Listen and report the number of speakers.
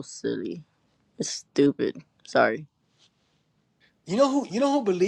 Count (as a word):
two